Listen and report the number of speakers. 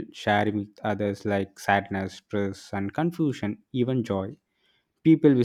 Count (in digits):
1